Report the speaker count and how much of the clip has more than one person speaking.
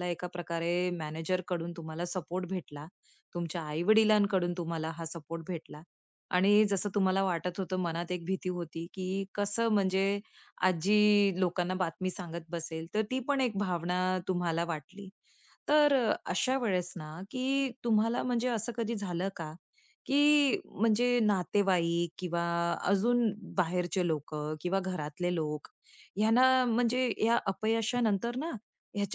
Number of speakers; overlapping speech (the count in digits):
1, no overlap